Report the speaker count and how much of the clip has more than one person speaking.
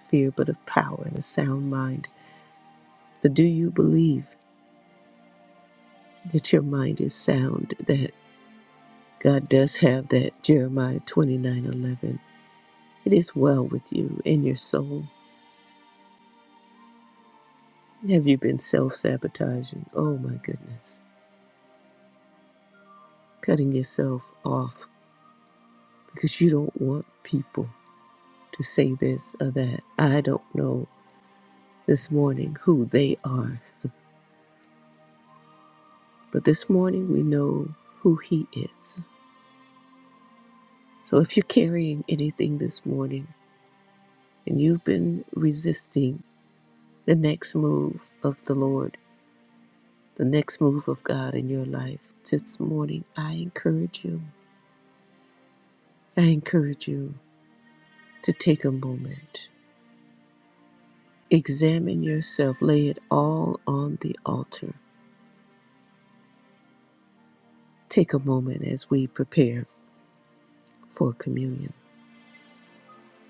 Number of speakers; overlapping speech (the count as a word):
one, no overlap